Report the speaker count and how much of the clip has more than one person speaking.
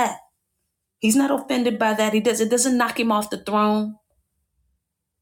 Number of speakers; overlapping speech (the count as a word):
one, no overlap